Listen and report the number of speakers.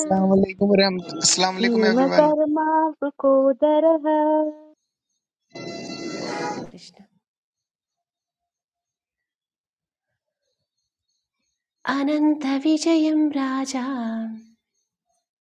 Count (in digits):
3